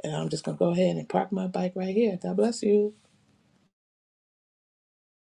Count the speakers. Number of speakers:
one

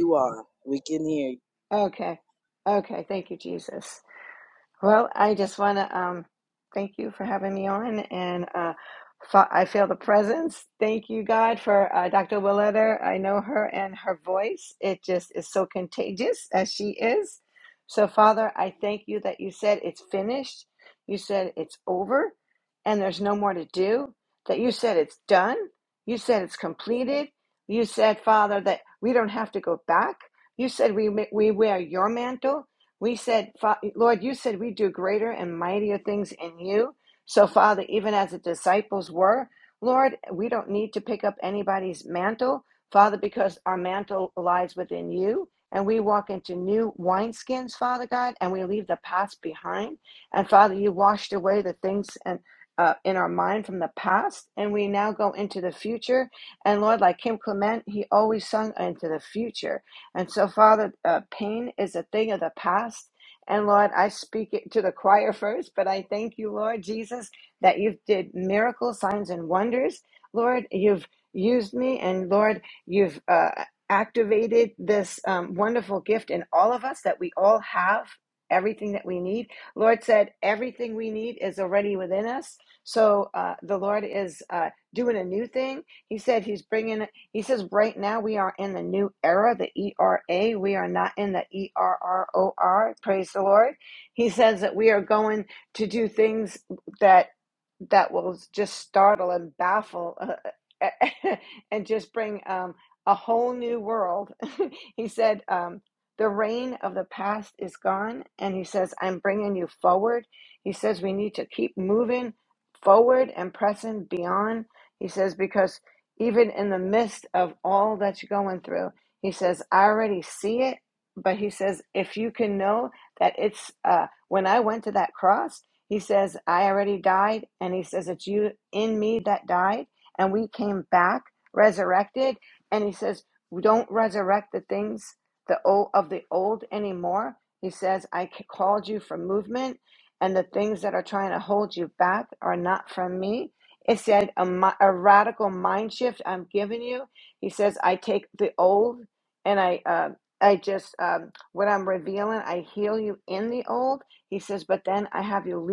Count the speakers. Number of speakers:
two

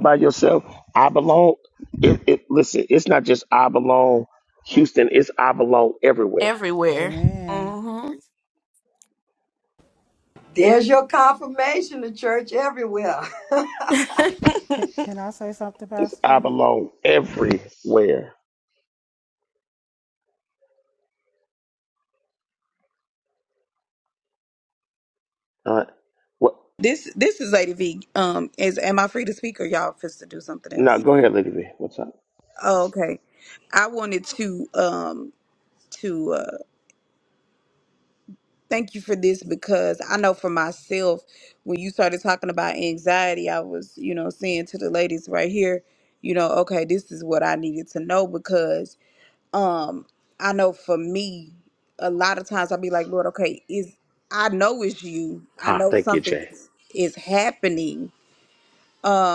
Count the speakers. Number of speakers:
five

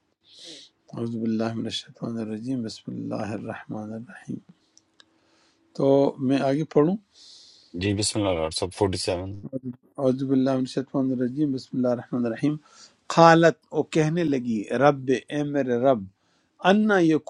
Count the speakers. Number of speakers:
two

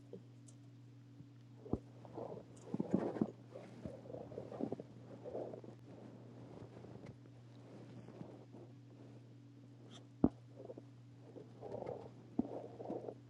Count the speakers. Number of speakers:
zero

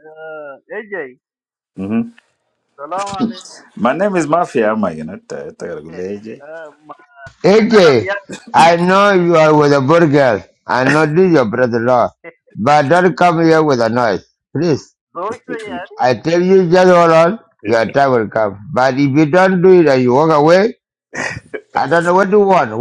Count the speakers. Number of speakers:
three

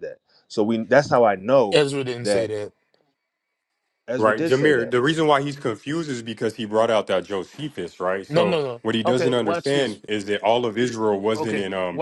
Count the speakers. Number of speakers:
three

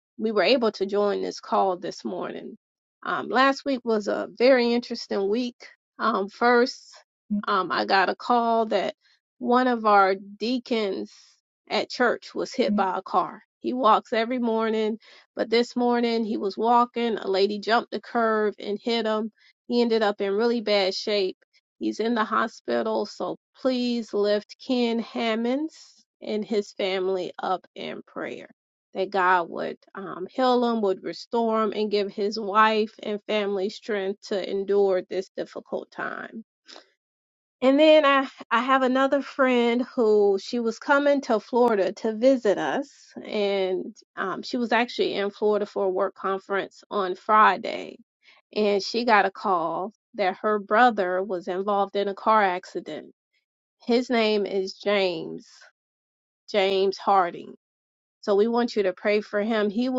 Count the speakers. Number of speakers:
one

